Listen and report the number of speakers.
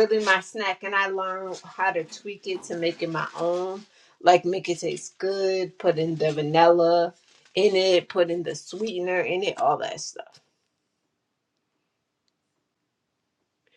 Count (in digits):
1